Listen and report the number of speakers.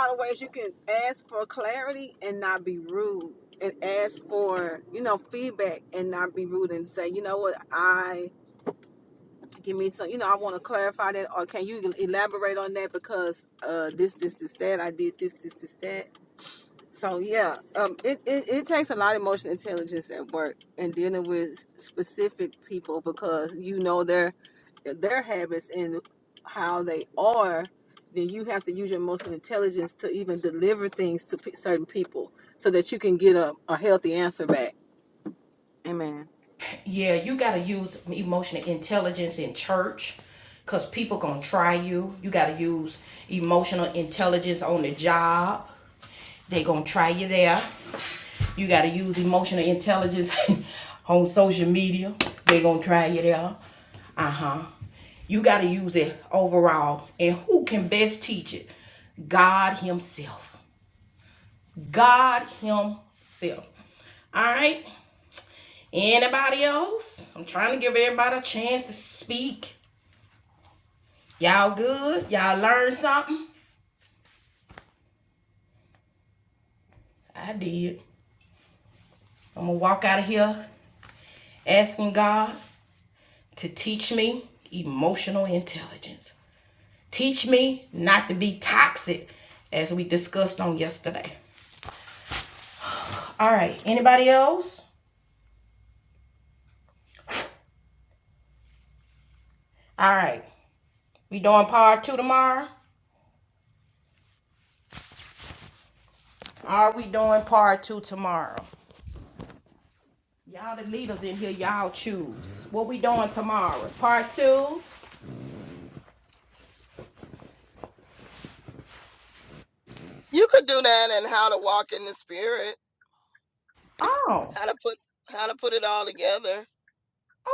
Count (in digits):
3